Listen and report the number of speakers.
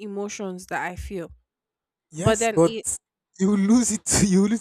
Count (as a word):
two